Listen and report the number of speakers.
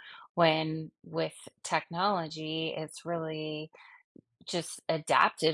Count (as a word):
one